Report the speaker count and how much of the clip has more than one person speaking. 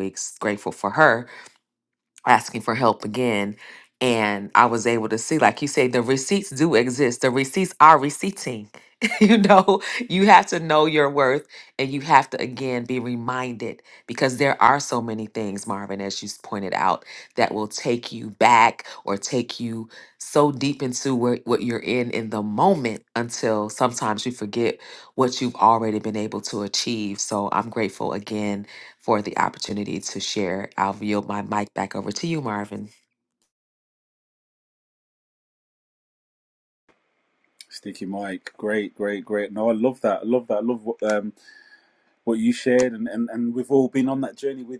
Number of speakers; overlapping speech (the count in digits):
2, no overlap